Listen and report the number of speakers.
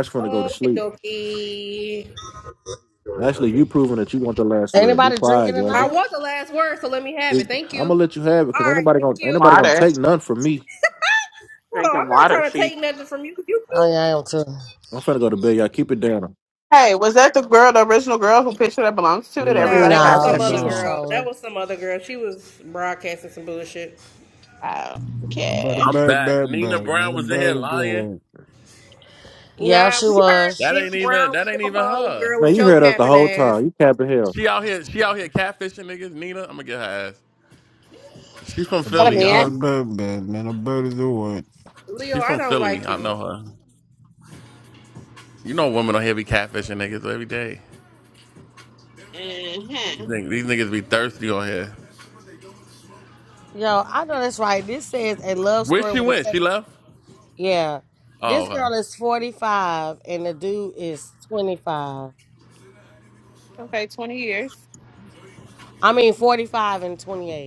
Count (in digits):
6